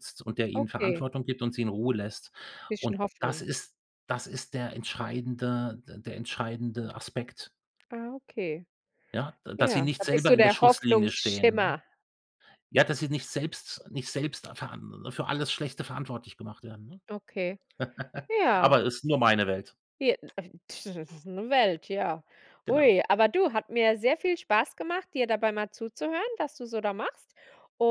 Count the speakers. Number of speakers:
two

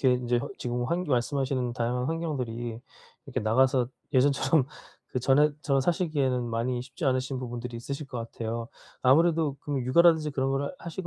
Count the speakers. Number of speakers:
one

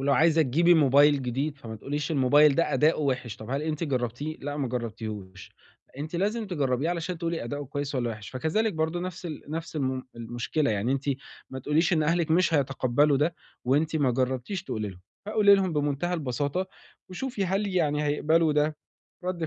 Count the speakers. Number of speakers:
one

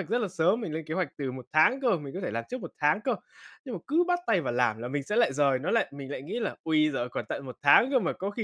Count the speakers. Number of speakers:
one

